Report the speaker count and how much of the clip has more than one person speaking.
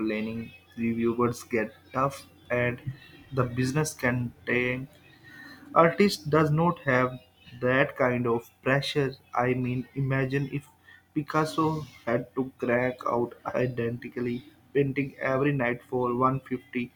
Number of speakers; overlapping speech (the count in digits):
1, no overlap